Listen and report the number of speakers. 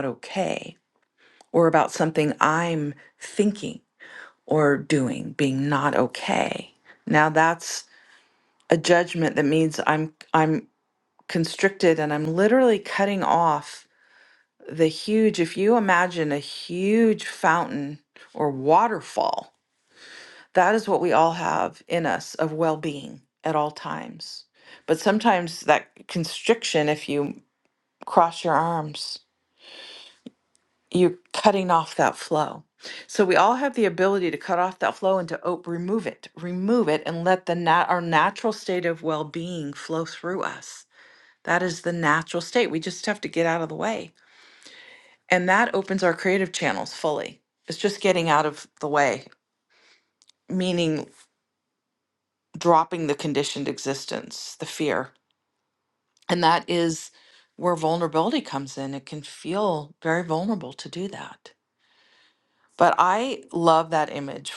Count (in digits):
1